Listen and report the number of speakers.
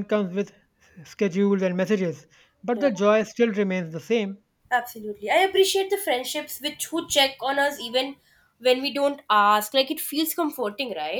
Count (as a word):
two